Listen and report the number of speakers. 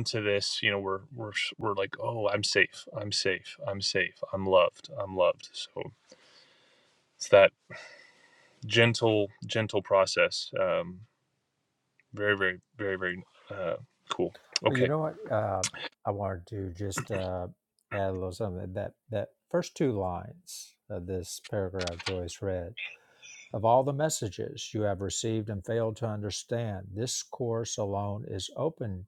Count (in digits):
2